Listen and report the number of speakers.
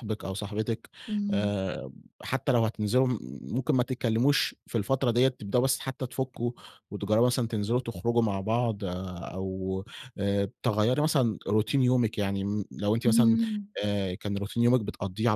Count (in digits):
2